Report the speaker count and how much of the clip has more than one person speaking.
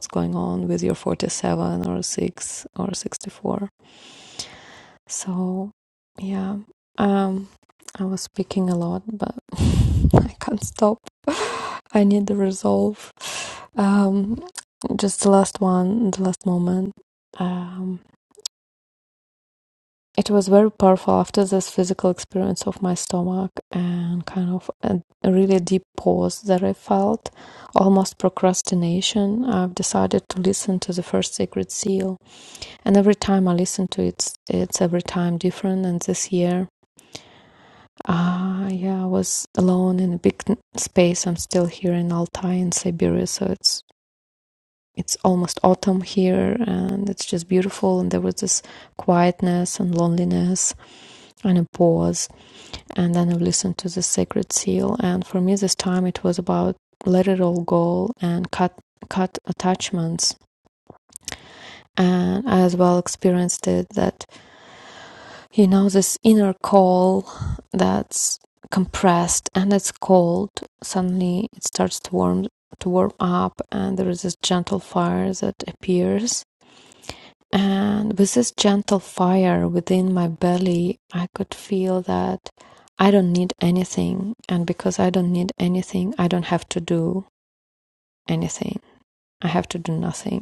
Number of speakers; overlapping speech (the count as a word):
one, no overlap